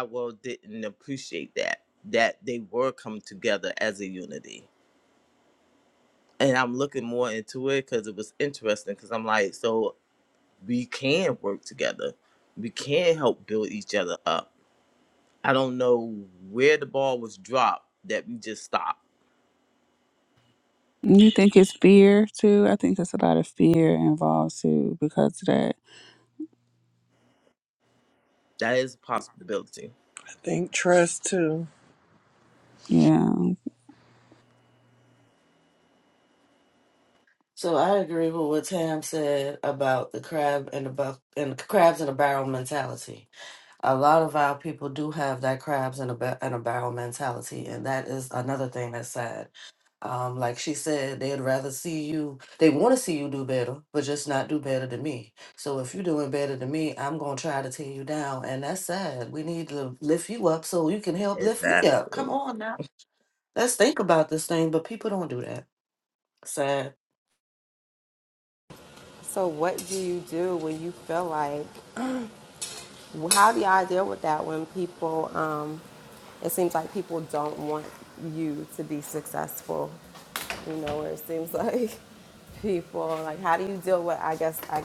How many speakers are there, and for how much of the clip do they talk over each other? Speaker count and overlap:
5, about 1%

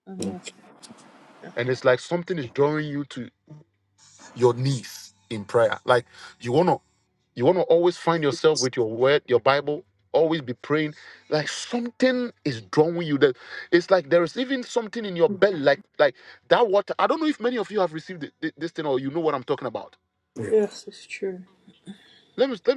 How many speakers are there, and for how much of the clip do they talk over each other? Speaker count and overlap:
2, under 1%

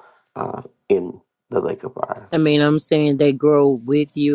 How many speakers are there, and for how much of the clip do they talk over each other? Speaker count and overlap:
2, no overlap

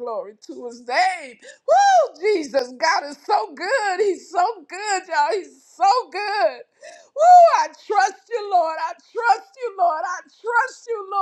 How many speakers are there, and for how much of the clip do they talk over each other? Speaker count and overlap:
1, no overlap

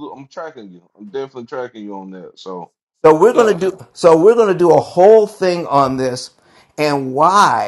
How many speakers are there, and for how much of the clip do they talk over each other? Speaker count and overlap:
2, about 4%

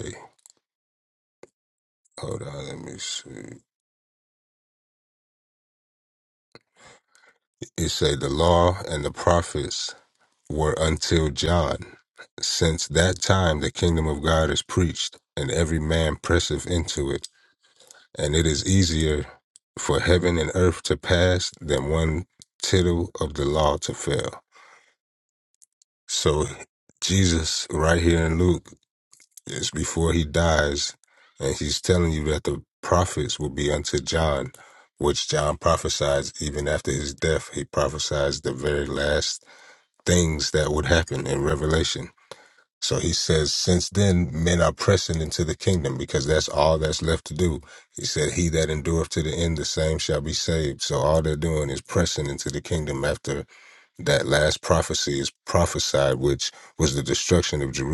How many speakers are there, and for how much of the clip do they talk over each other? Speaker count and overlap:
1, no overlap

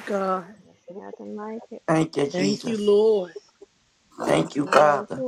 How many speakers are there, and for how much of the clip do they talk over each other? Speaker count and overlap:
3, about 20%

